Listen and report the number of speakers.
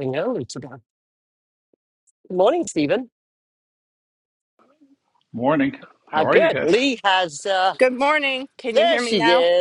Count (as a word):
three